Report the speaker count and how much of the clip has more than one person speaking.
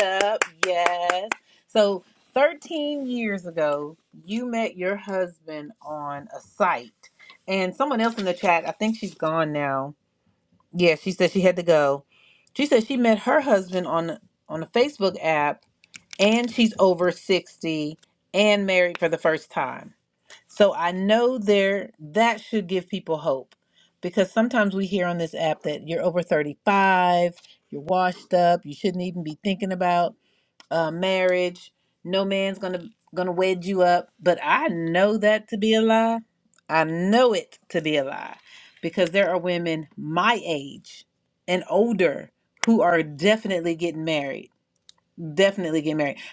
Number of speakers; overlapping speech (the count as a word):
one, no overlap